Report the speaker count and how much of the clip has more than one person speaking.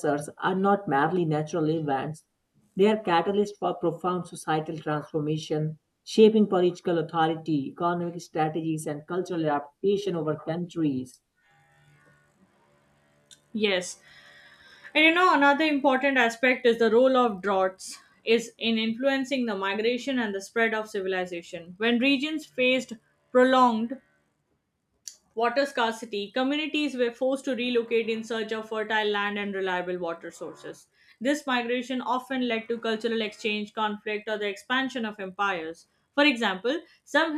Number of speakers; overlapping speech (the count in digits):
2, no overlap